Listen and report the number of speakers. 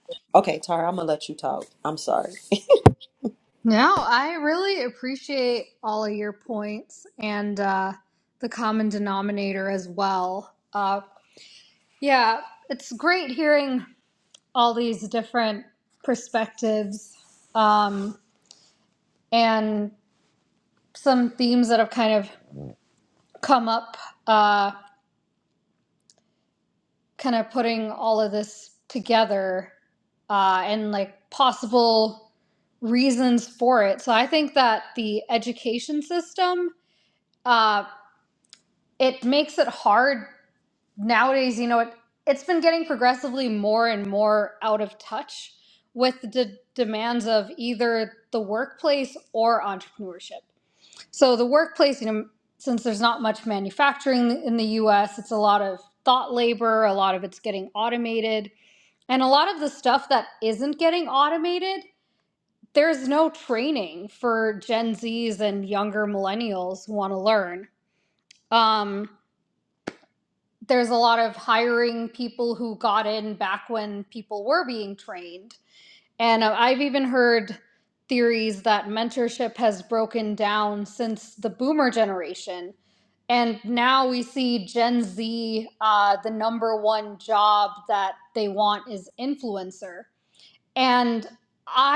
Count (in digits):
2